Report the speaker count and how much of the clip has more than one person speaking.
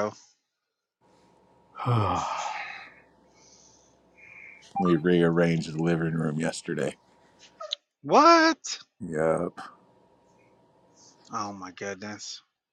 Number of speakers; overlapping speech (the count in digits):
2, no overlap